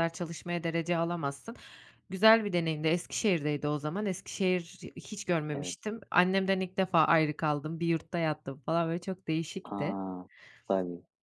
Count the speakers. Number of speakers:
2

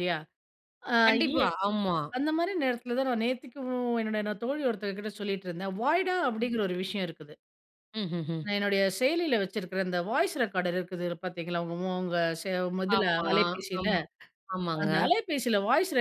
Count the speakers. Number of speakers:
2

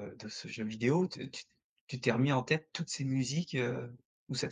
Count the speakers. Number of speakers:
1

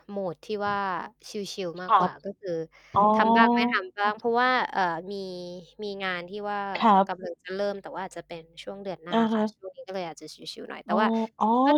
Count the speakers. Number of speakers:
2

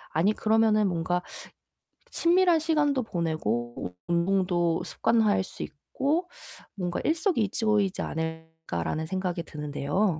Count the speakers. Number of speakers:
1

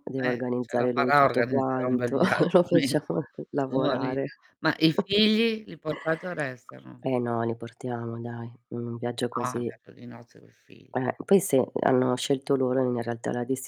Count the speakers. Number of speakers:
2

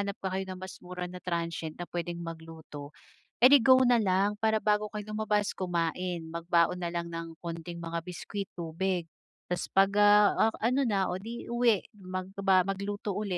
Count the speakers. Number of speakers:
1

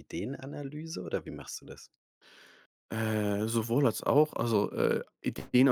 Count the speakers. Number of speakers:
2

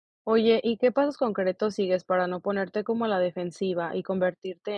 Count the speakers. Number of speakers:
1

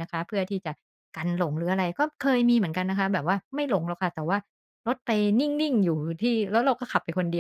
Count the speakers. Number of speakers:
1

